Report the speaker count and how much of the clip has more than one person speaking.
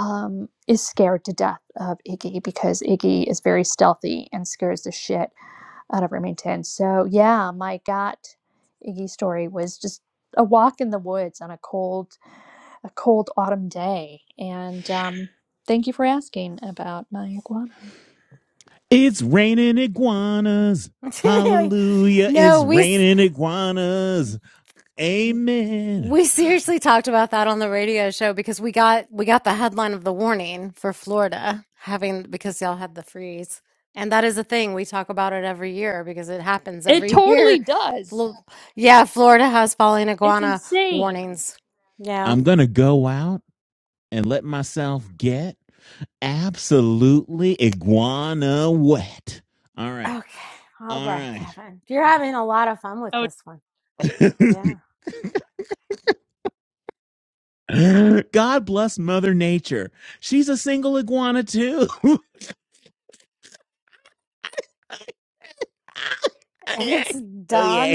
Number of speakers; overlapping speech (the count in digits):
3, about 5%